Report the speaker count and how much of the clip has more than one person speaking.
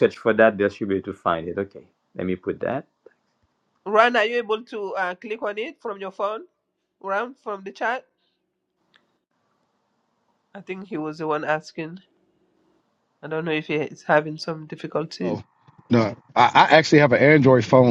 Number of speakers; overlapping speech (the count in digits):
3, about 1%